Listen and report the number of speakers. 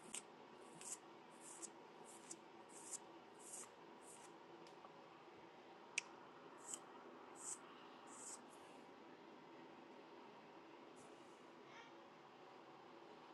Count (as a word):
zero